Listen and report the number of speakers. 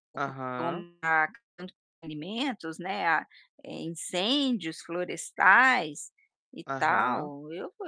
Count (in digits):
2